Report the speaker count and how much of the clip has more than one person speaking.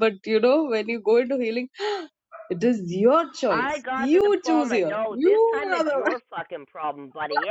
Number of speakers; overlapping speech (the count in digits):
2, about 29%